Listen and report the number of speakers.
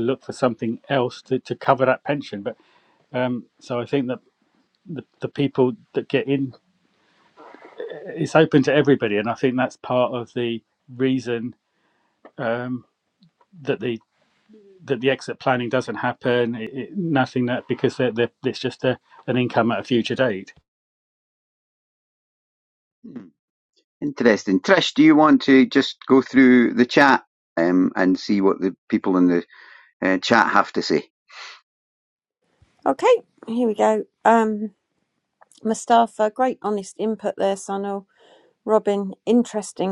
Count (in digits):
3